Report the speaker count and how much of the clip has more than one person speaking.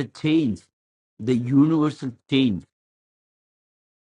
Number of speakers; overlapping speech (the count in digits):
1, no overlap